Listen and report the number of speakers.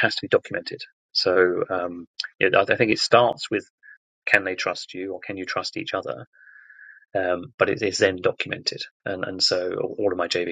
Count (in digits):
1